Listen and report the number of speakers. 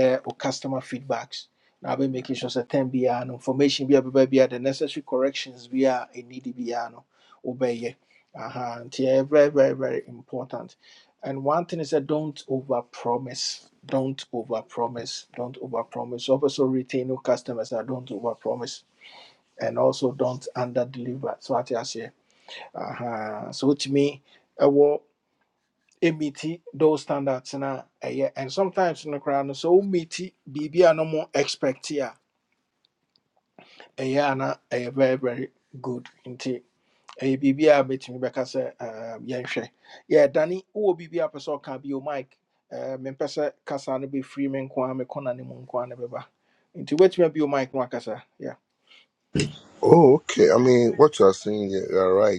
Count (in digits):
2